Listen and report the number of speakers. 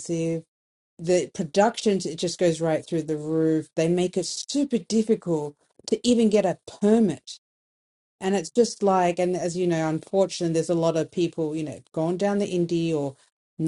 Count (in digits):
1